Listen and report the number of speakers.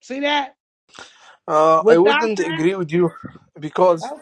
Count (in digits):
2